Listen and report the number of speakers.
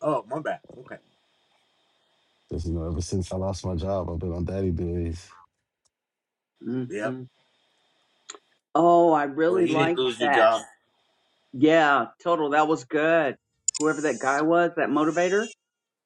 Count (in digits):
3